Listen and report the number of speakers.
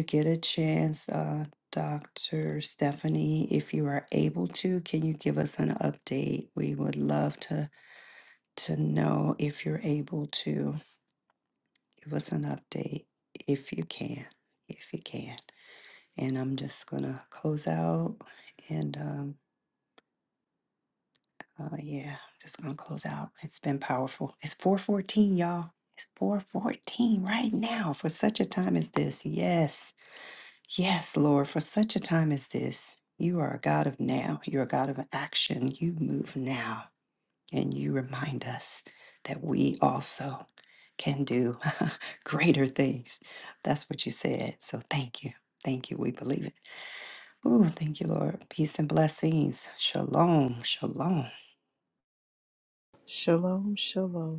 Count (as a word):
two